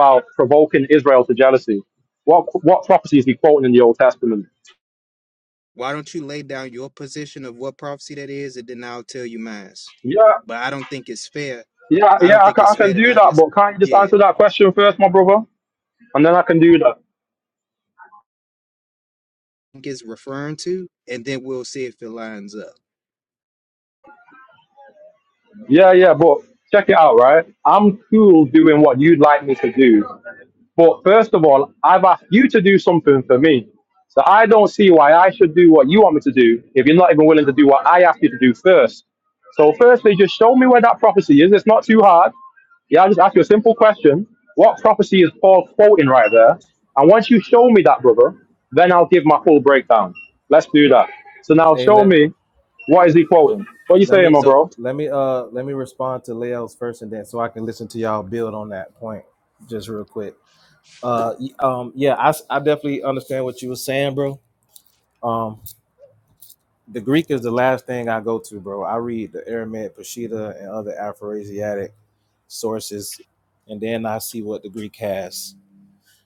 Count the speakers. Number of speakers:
3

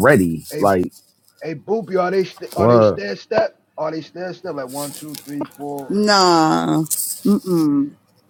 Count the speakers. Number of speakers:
3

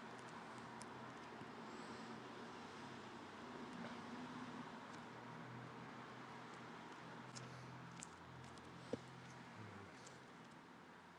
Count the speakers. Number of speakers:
0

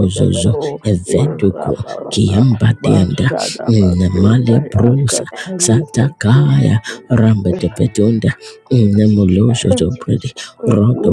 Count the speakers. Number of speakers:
3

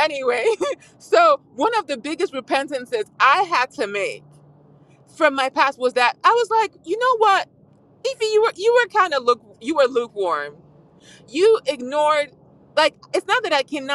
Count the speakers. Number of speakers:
1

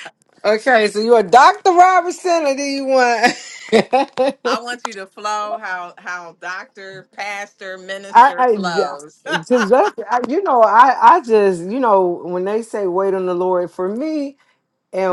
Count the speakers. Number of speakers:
2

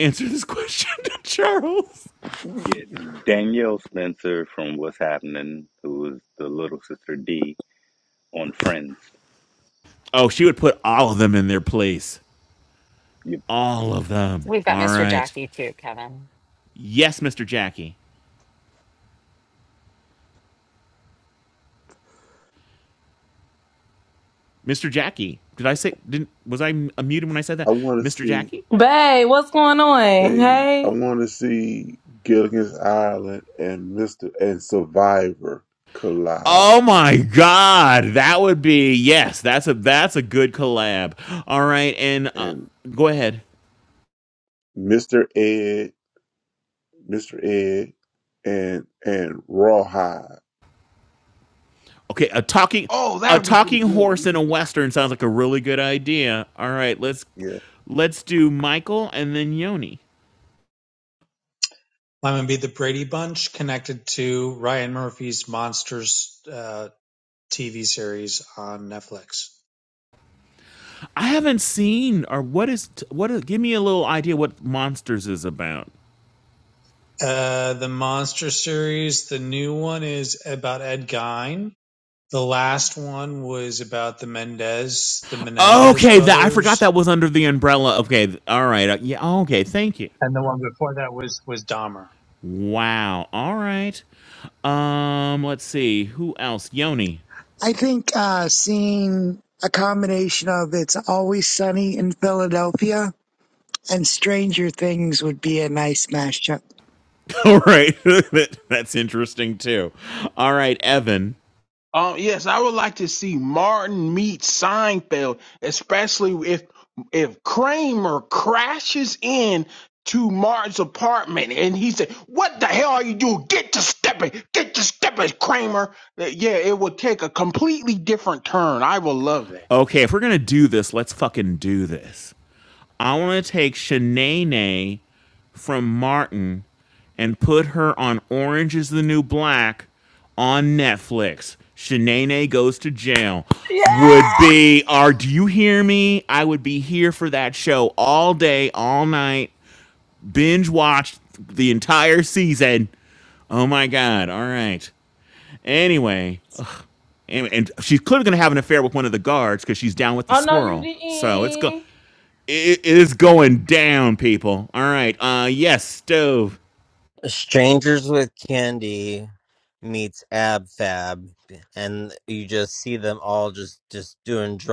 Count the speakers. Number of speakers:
9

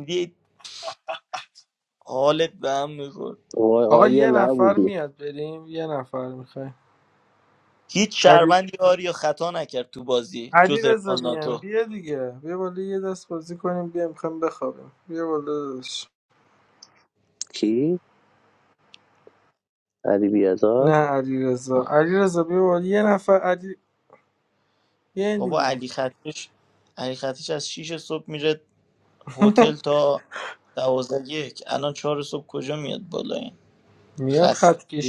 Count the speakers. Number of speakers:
3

